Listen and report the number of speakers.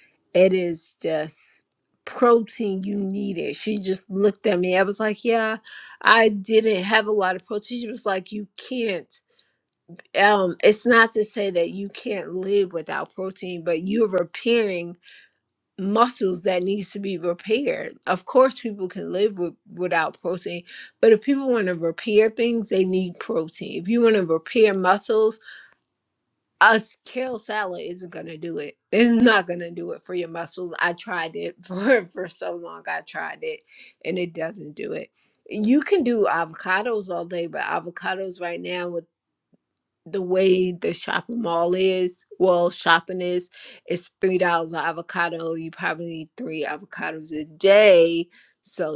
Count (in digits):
1